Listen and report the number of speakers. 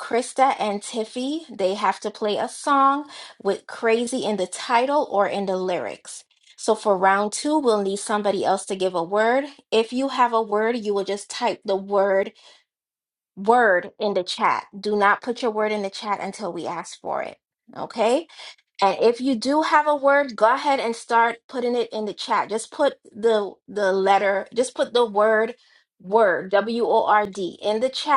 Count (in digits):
1